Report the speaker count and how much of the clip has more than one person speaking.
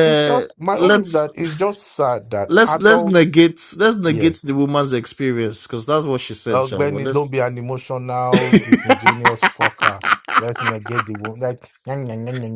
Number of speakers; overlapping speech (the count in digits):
2, about 22%